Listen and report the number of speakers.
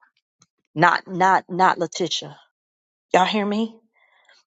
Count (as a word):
one